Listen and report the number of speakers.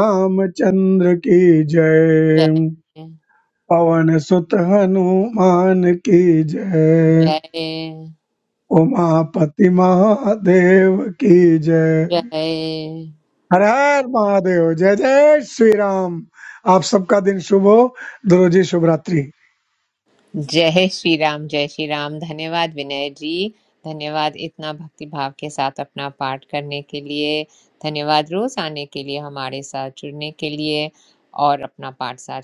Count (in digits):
2